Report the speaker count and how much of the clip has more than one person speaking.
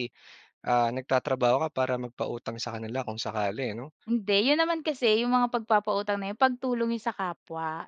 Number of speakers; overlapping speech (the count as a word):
two, no overlap